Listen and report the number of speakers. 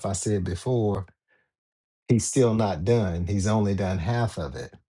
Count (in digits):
1